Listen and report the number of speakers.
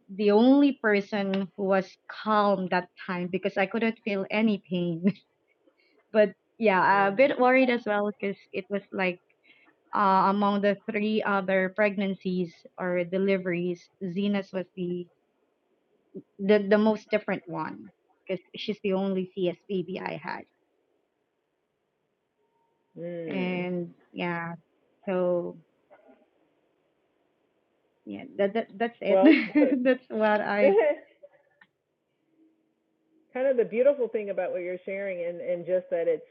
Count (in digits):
2